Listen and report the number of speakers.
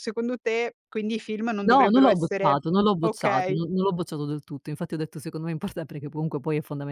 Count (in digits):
2